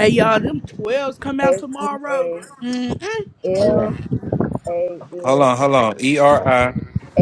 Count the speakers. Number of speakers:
3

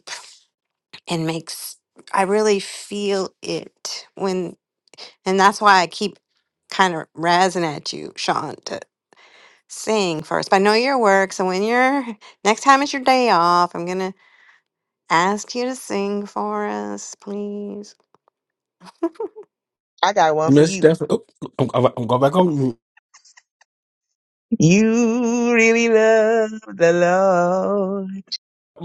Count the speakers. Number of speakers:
3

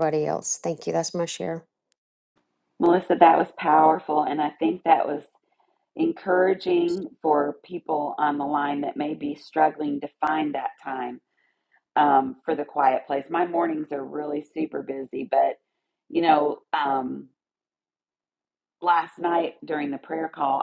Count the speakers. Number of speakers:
2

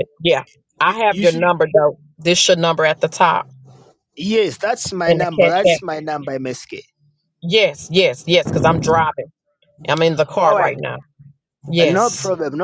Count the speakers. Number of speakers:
2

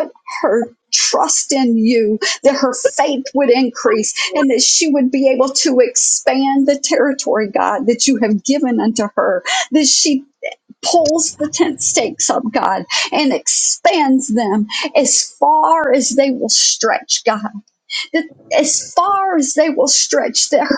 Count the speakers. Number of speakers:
1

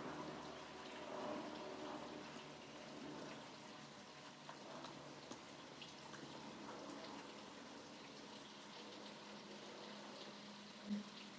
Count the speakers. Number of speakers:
0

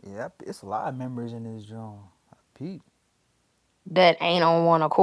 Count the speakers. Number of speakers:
2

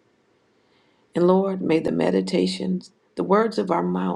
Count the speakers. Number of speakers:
1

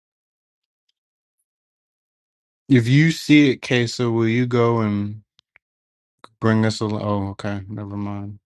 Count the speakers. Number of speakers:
1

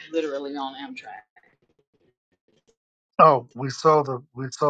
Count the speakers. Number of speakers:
2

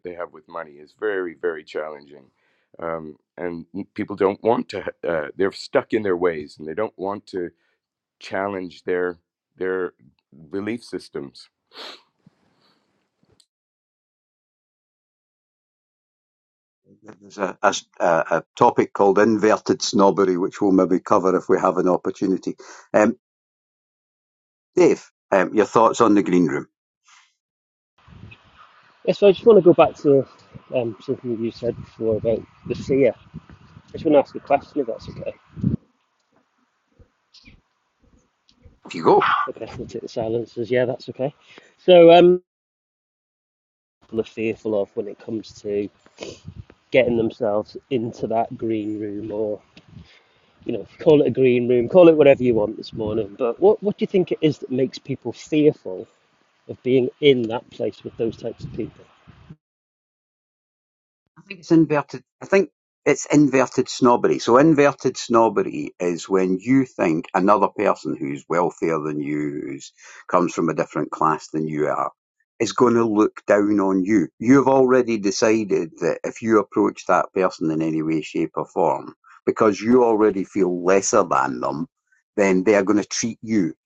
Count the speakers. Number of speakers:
3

